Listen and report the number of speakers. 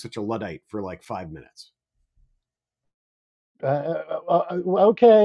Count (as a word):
two